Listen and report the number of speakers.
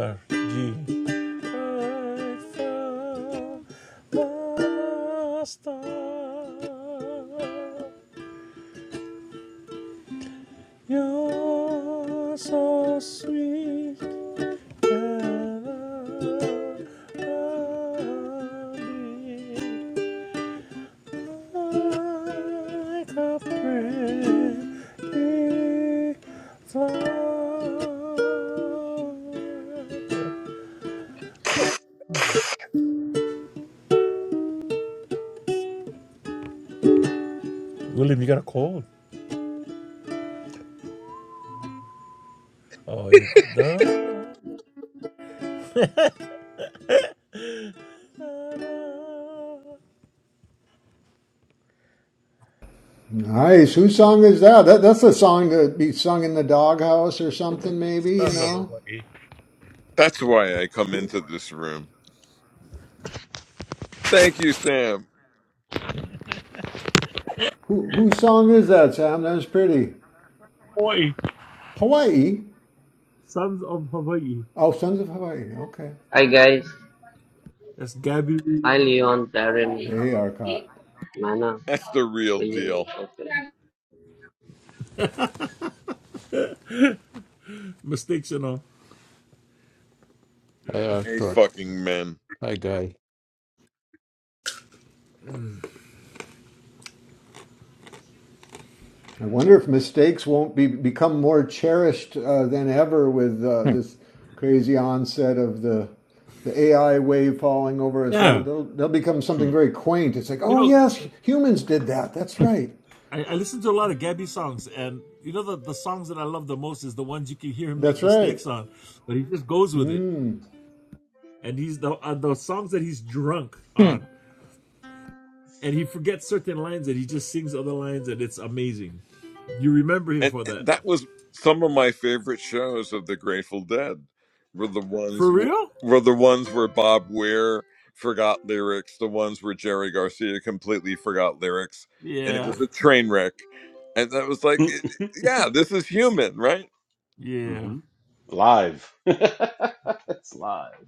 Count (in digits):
6